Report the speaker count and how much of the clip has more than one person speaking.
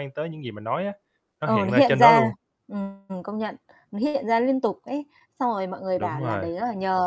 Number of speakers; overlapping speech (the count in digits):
2, about 19%